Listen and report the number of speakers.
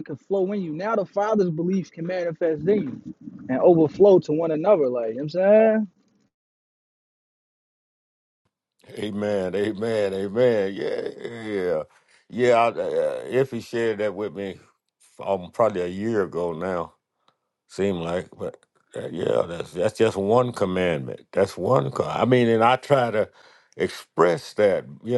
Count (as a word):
two